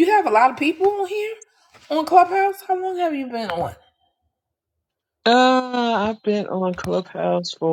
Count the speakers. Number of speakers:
2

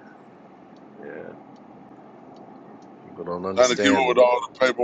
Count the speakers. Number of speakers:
2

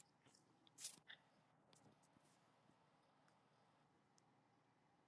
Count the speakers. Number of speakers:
0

